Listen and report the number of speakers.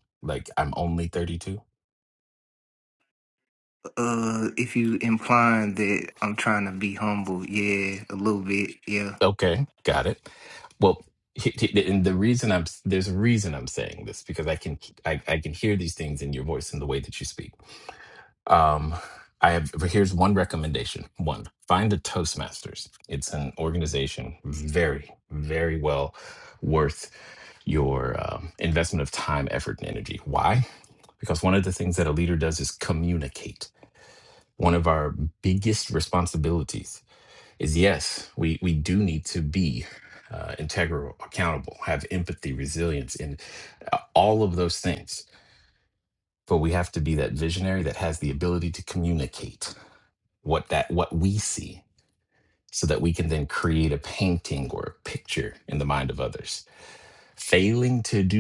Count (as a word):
two